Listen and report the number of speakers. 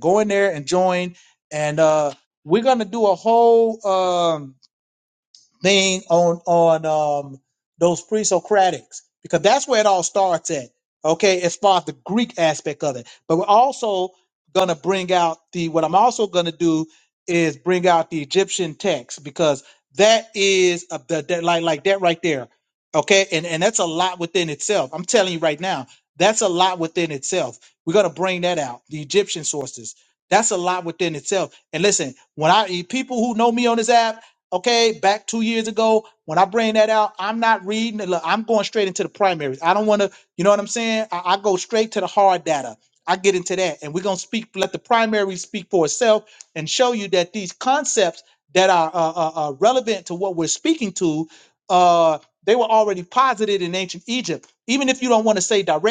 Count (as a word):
one